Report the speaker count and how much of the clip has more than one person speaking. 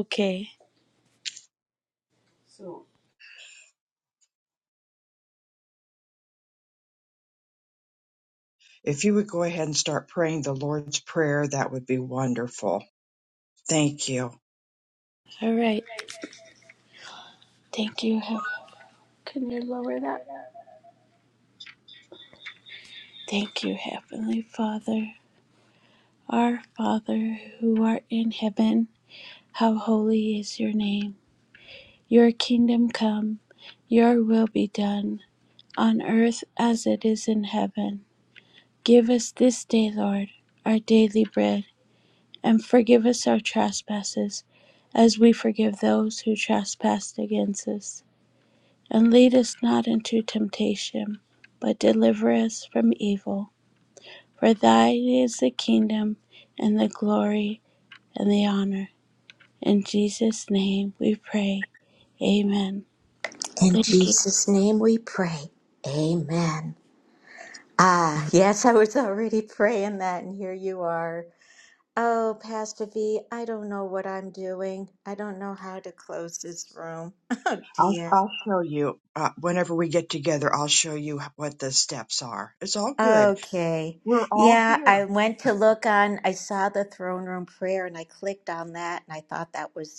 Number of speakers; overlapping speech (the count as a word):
three, about 2%